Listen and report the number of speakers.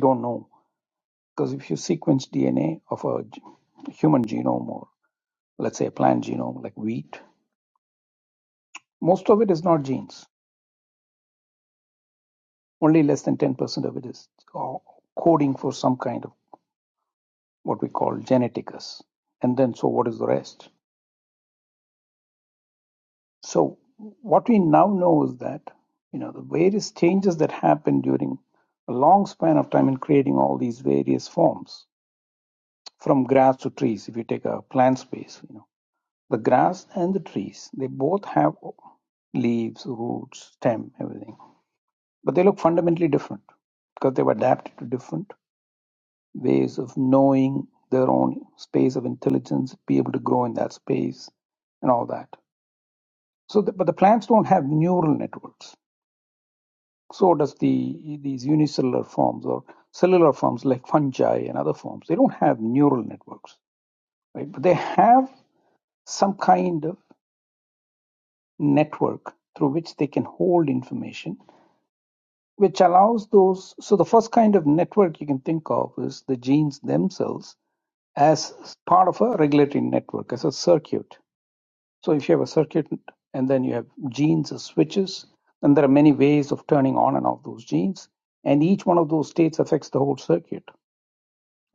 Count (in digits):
1